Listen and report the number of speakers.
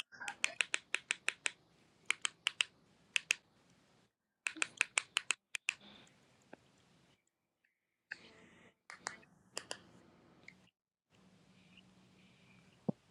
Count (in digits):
0